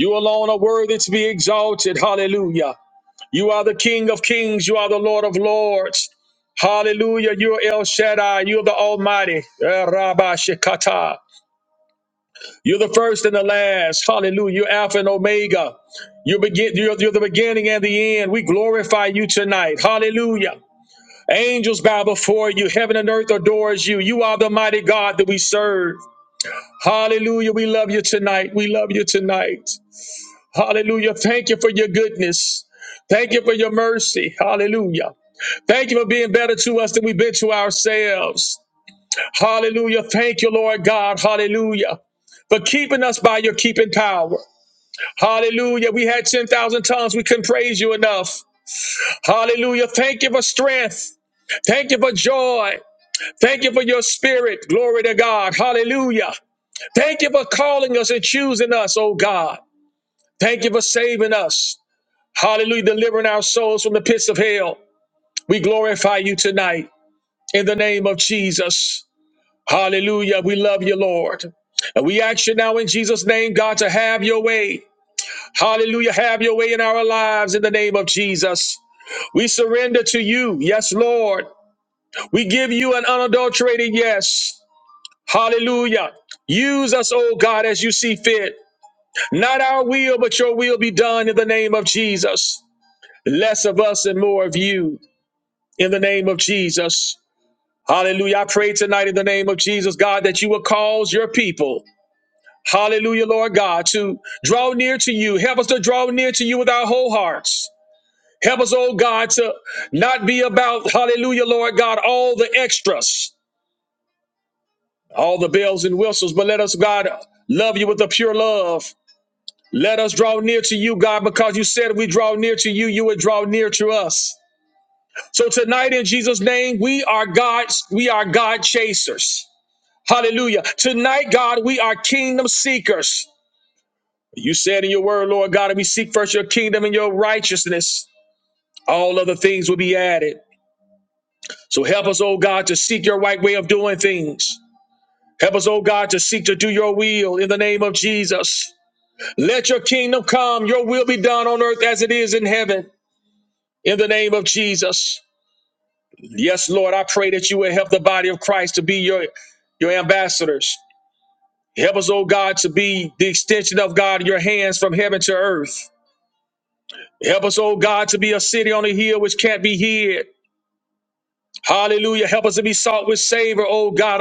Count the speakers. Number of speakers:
one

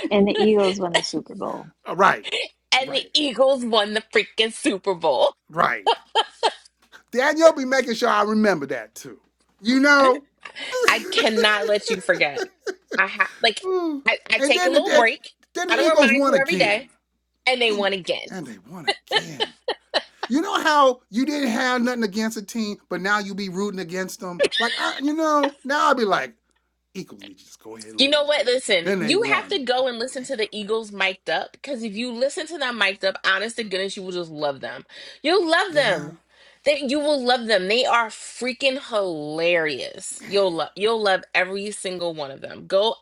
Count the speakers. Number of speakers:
three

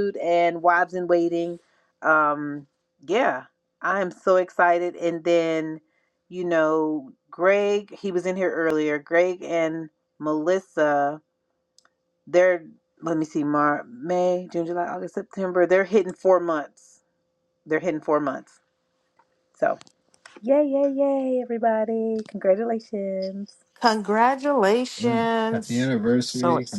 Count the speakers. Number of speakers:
three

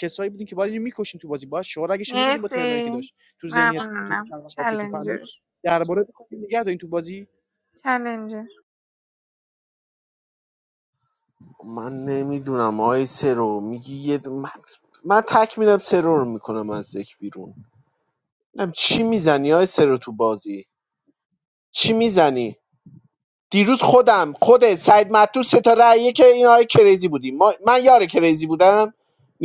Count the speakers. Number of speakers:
three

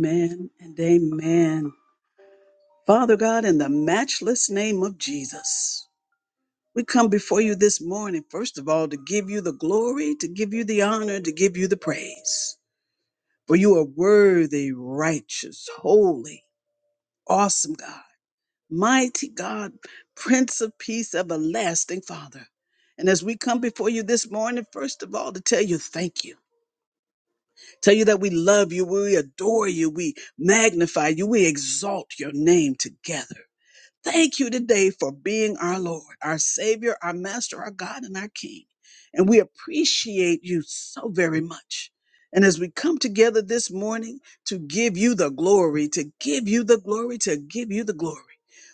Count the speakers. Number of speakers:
one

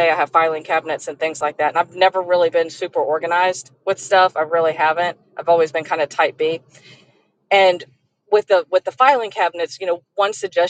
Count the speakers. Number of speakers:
one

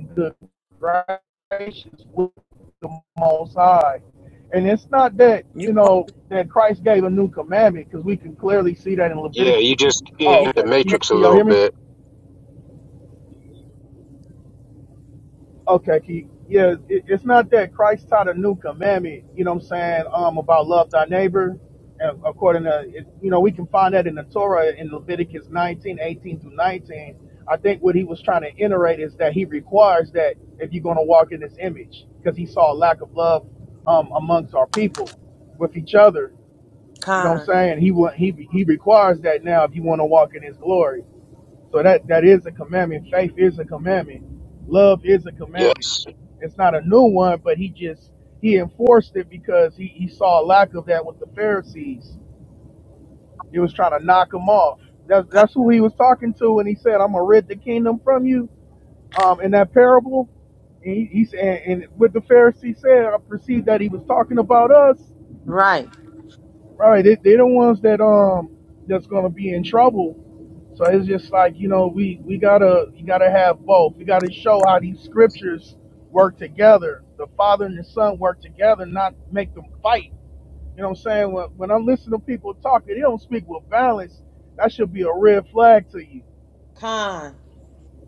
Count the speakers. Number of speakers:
three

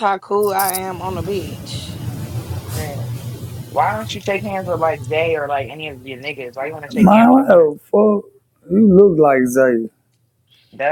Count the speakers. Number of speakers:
three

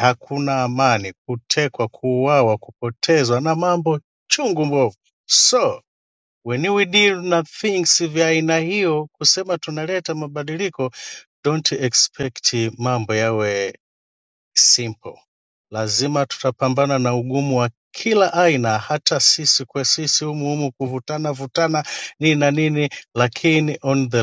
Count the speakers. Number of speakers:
one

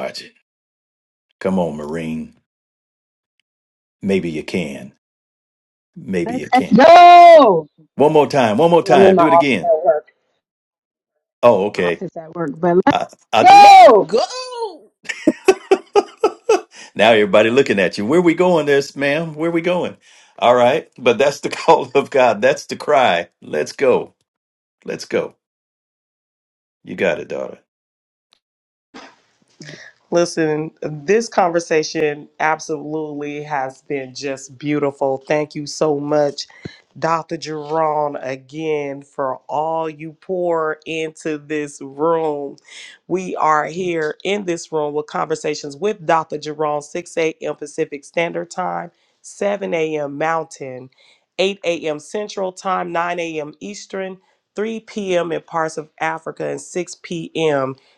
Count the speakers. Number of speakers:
four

